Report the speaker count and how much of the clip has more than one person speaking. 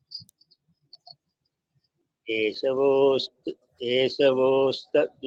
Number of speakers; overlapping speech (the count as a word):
one, no overlap